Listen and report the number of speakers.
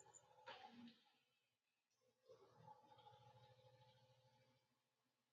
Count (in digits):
0